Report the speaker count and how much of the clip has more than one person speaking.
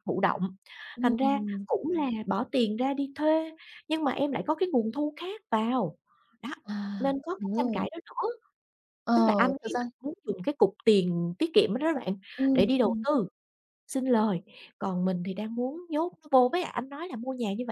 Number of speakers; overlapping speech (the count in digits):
2, about 11%